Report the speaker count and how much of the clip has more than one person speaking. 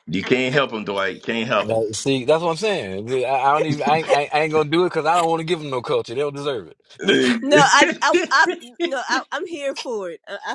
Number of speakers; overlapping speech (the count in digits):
3, about 2%